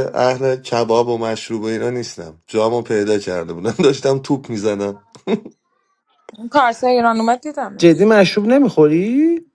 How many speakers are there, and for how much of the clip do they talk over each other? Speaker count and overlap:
3, about 1%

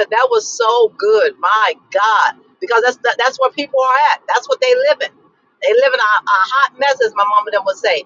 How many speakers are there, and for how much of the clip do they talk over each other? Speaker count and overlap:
1, no overlap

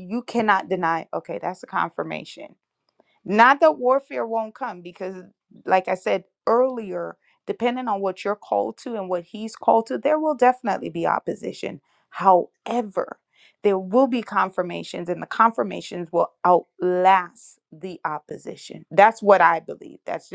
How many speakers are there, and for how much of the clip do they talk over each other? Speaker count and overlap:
1, no overlap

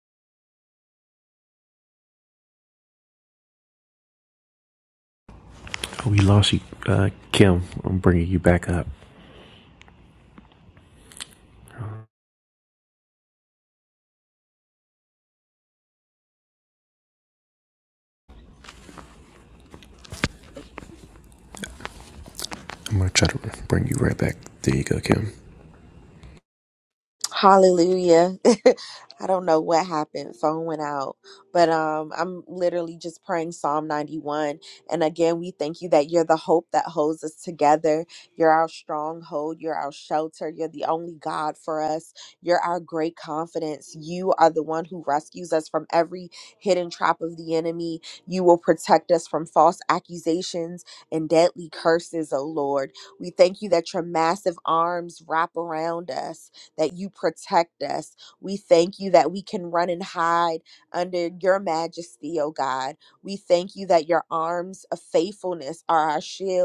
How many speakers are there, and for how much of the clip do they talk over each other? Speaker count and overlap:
2, no overlap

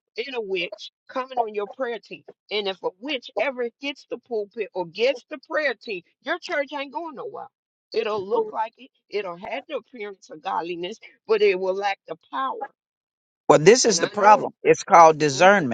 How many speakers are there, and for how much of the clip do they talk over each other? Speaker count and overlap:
2, about 6%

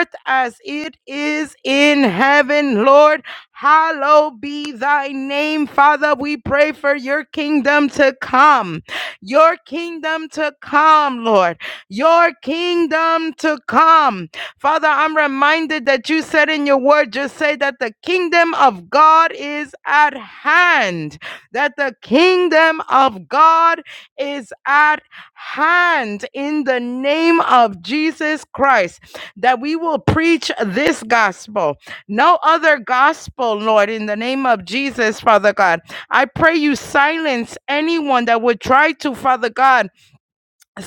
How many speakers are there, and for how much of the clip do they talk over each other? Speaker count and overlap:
1, no overlap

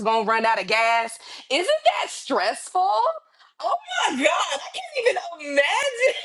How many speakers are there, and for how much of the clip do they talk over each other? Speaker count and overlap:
1, no overlap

